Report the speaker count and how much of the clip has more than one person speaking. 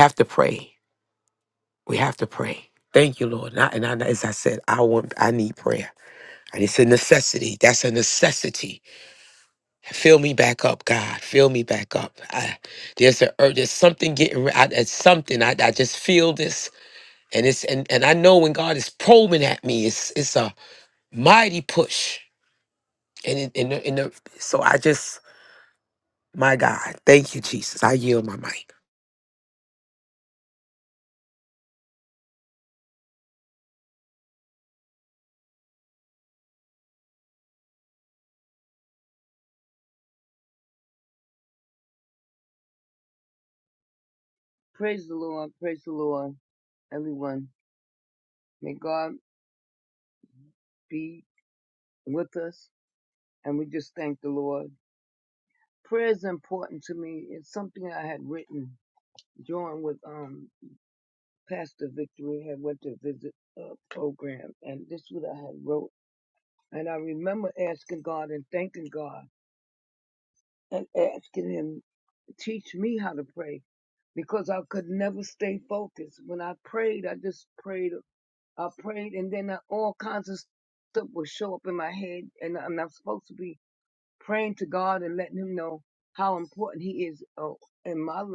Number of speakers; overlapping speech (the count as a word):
two, no overlap